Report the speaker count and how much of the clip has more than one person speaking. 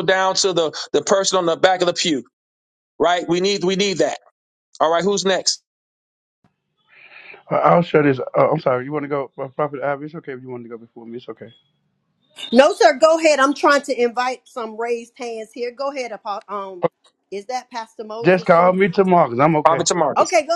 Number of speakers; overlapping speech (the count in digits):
3, about 4%